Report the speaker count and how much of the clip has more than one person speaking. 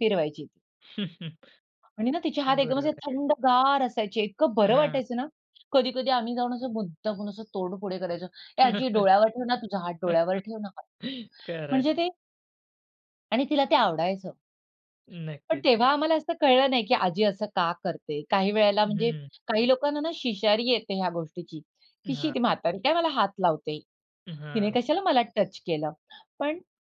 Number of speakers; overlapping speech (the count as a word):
two, about 7%